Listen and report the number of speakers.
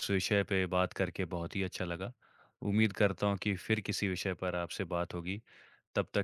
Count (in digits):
1